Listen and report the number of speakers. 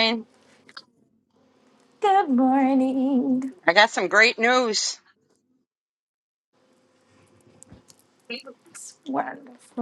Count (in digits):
2